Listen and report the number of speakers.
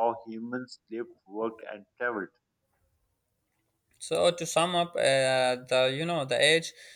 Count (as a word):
two